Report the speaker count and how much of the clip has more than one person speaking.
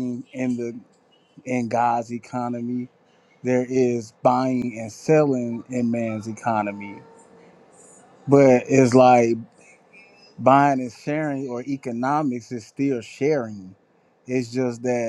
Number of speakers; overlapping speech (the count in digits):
1, no overlap